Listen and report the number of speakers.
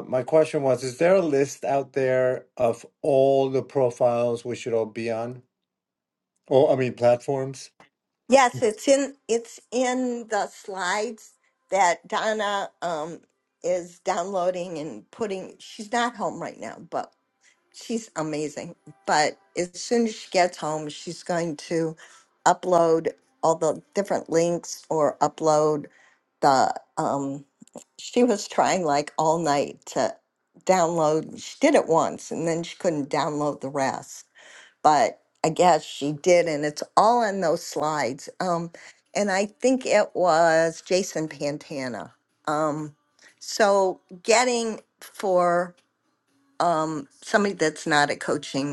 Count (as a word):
two